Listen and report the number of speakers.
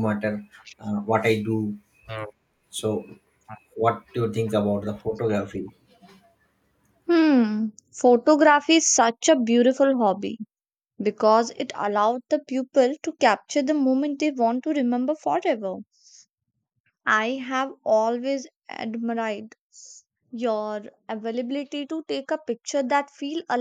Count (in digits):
2